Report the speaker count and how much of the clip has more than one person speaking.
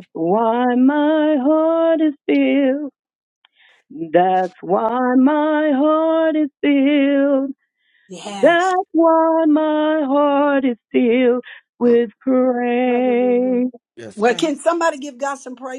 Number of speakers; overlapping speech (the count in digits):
3, about 6%